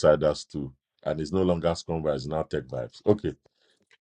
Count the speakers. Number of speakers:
one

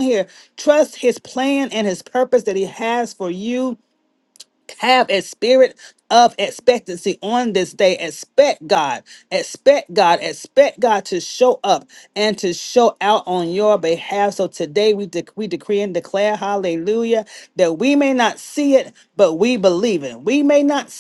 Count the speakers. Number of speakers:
one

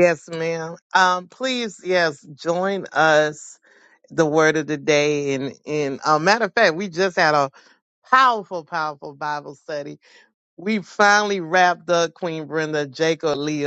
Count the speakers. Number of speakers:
one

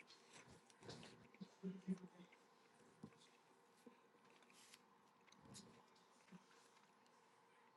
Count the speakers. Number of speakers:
zero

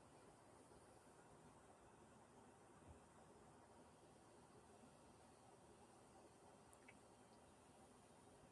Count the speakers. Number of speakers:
zero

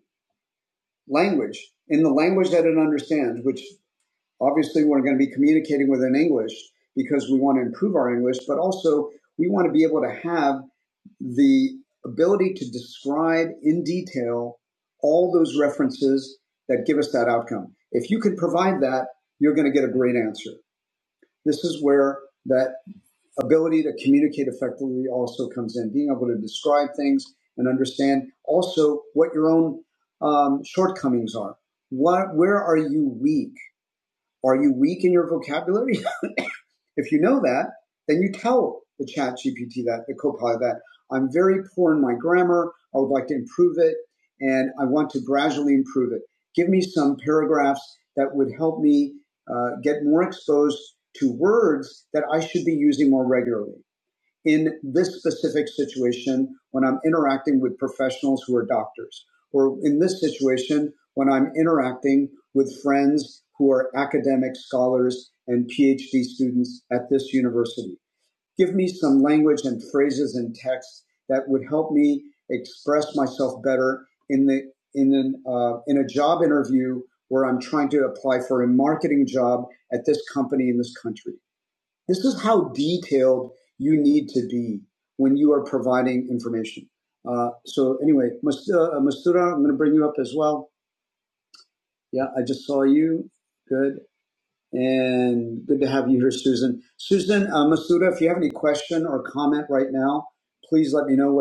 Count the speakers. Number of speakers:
one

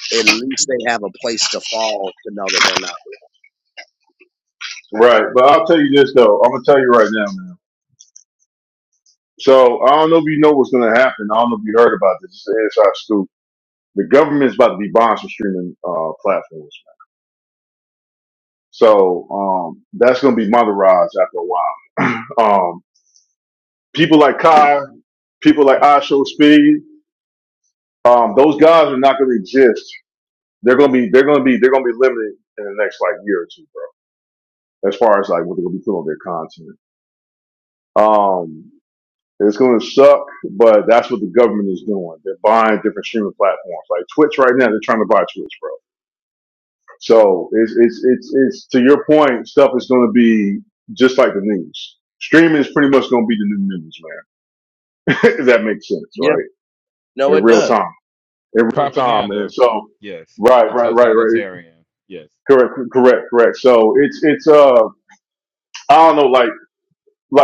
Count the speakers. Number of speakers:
three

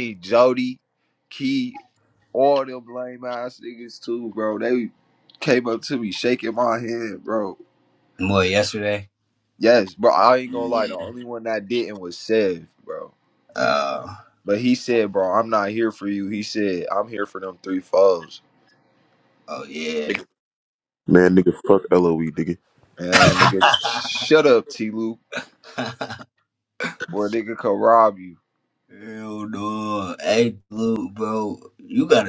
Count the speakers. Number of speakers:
three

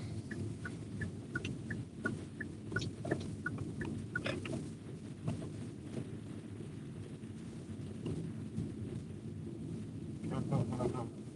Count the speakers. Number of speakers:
zero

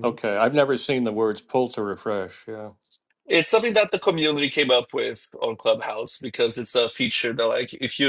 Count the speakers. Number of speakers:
two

